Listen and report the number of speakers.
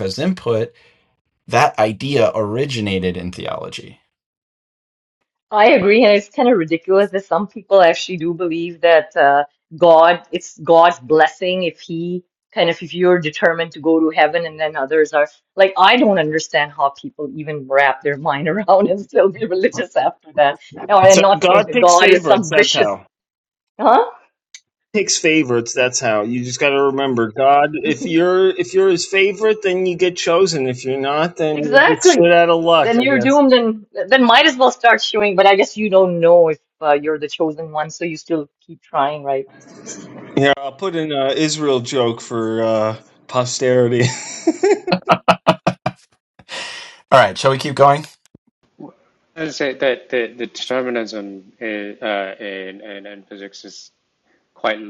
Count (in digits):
4